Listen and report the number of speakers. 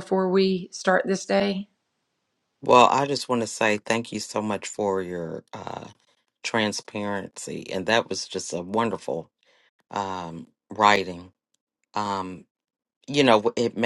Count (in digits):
2